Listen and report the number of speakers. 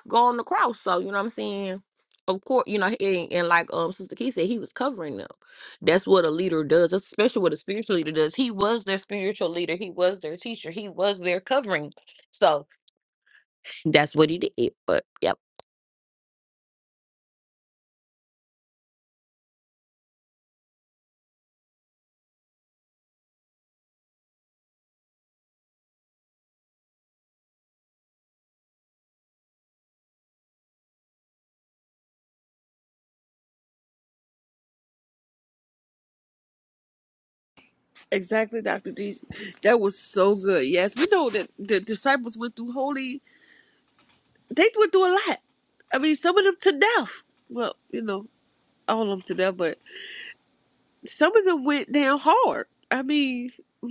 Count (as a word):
two